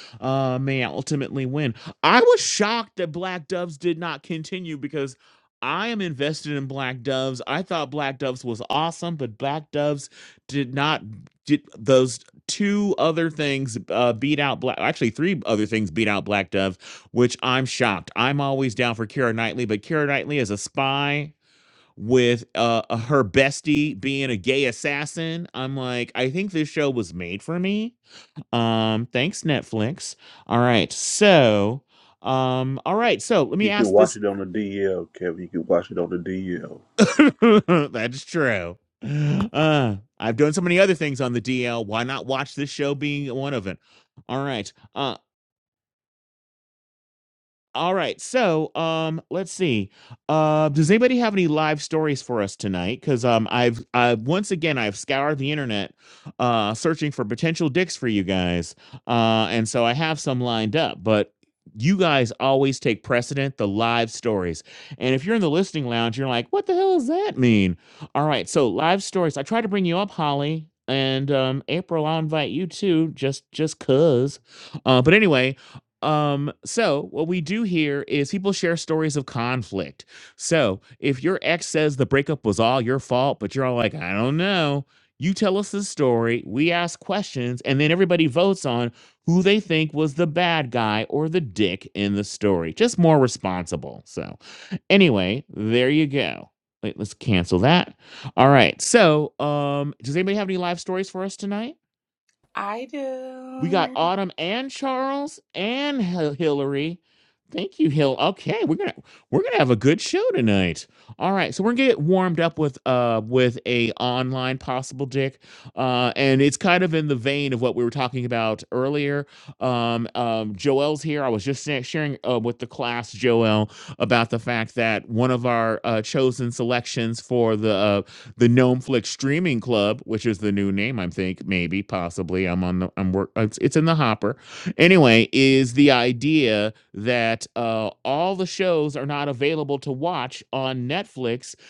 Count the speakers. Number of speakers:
3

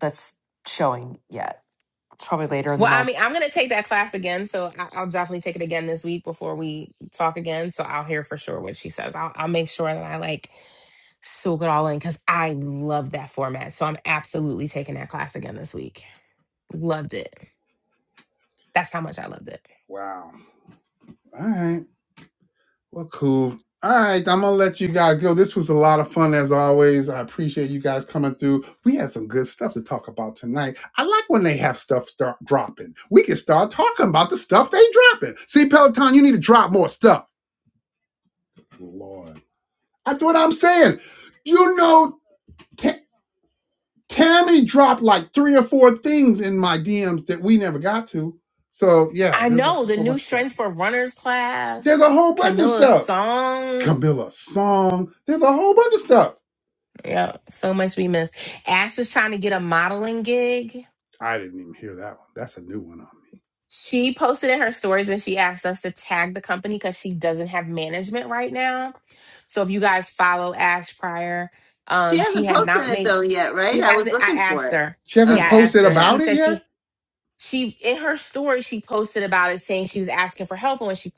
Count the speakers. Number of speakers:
4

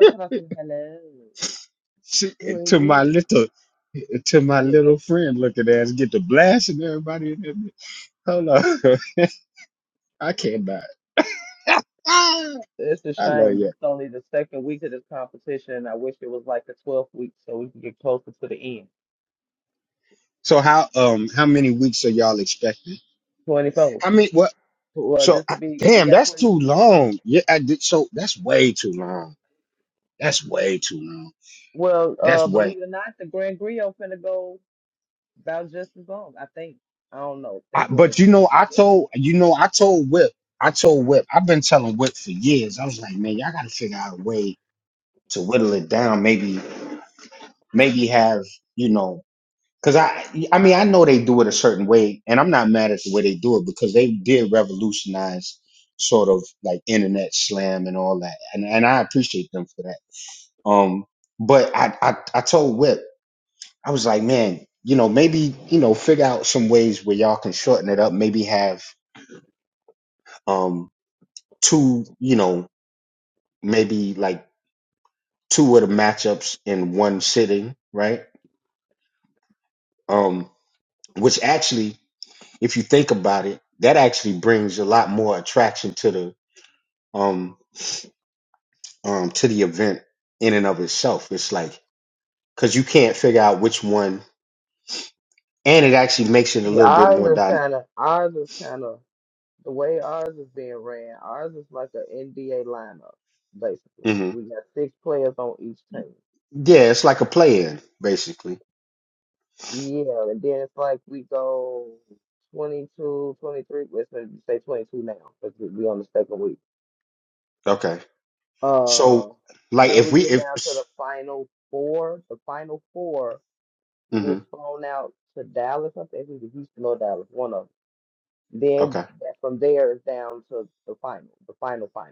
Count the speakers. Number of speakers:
2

